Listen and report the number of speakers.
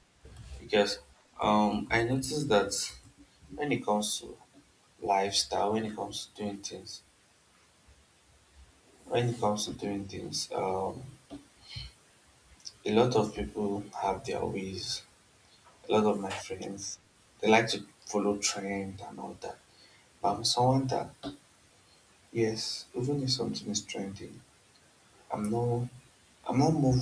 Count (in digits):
1